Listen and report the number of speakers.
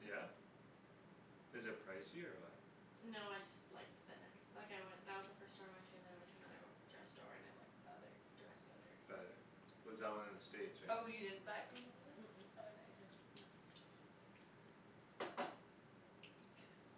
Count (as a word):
three